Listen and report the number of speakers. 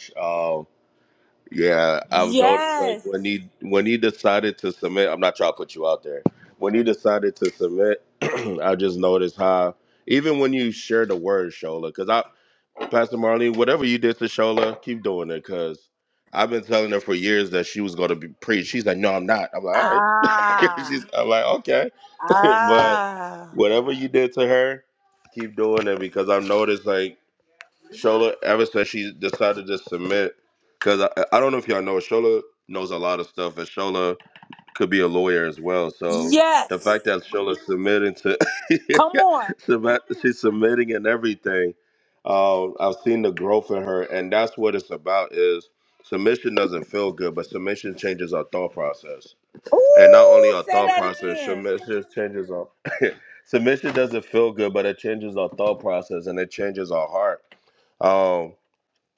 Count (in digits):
2